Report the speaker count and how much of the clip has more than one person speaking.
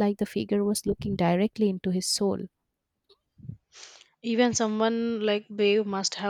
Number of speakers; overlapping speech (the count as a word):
two, no overlap